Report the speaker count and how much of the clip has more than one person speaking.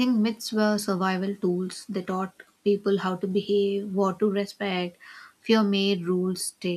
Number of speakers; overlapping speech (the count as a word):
one, no overlap